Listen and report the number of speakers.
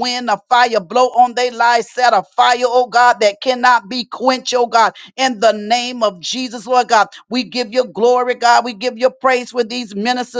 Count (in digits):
1